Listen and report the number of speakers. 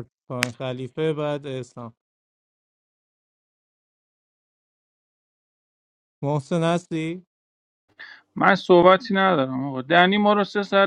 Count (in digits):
2